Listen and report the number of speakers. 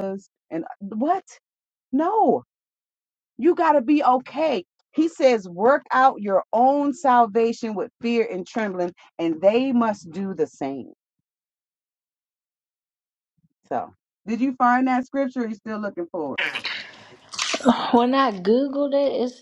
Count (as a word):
two